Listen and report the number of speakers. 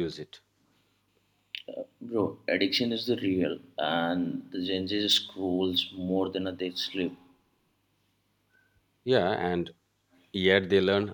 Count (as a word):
two